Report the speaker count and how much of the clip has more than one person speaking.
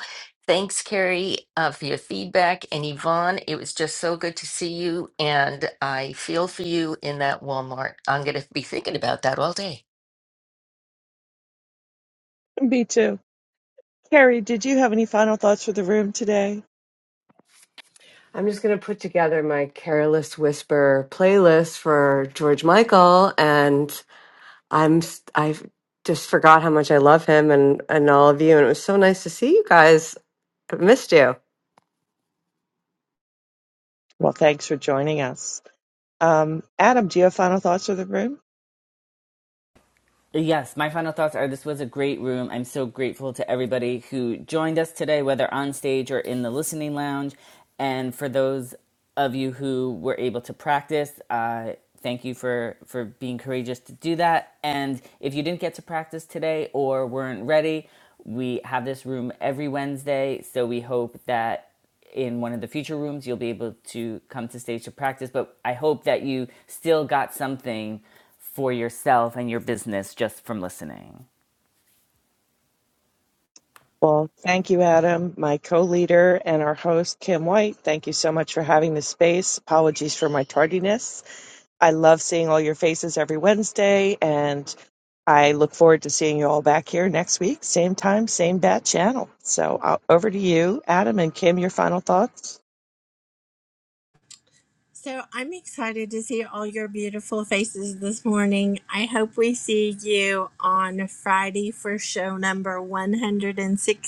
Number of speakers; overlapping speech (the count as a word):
five, no overlap